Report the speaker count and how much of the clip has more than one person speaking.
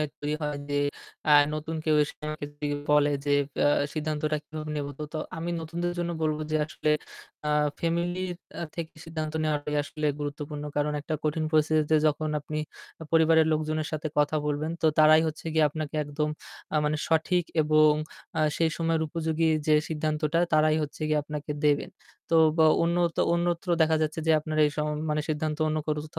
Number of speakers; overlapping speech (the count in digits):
1, no overlap